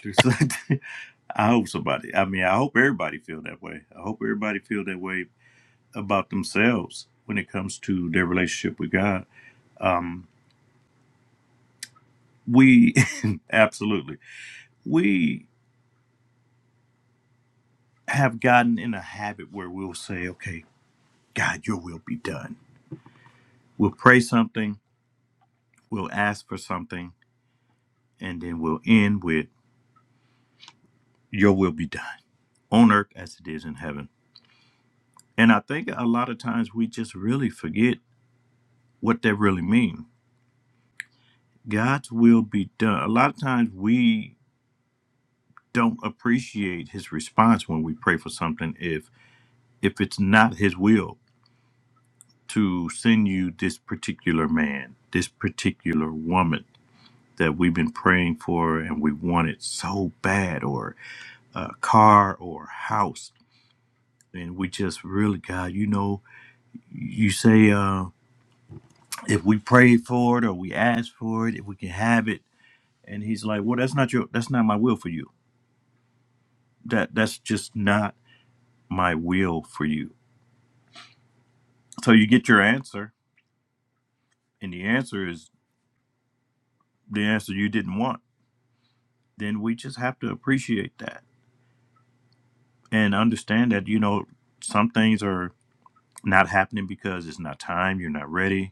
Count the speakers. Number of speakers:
1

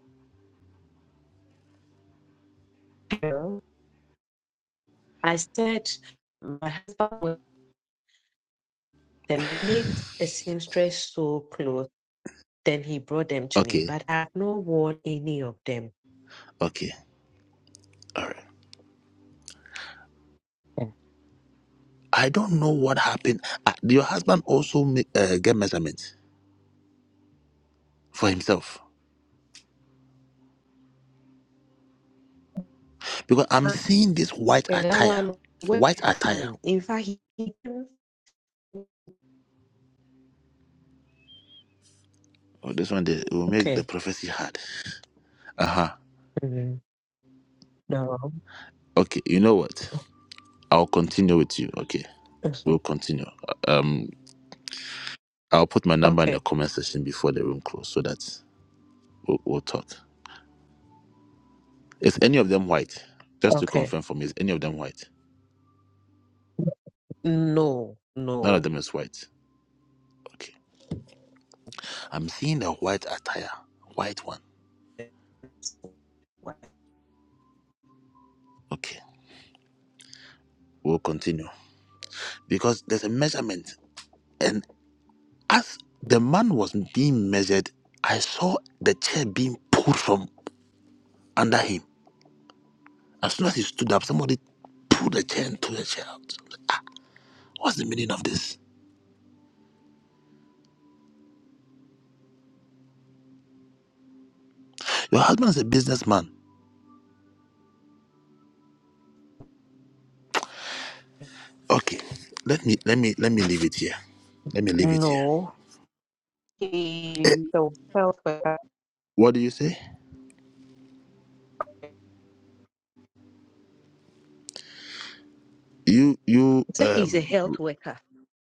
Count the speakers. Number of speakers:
2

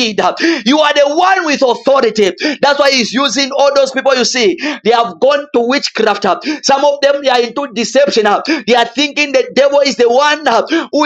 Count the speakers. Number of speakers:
1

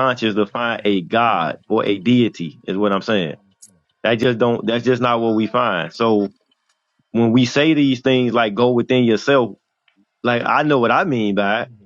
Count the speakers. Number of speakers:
1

